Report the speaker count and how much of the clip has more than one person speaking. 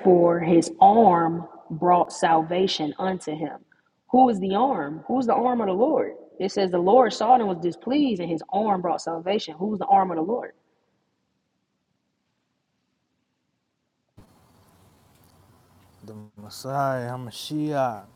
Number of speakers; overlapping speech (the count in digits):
2, no overlap